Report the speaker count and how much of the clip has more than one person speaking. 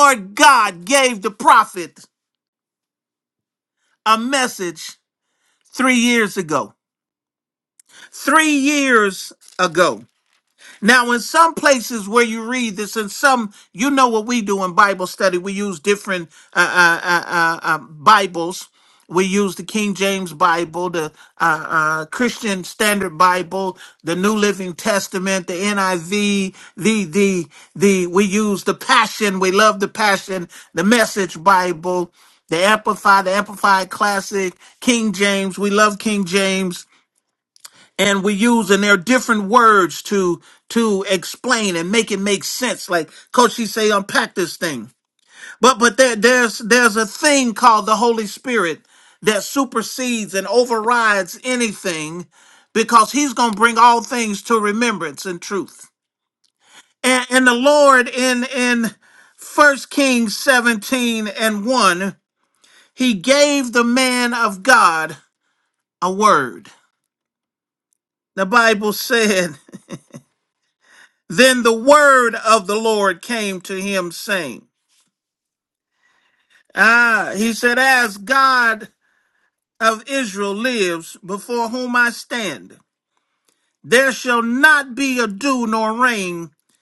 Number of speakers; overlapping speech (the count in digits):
1, no overlap